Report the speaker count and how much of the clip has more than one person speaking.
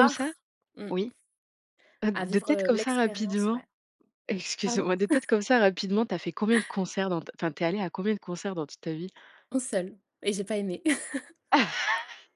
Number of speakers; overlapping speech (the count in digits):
2, about 16%